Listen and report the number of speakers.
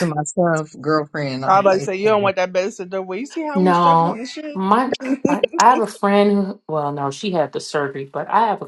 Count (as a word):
three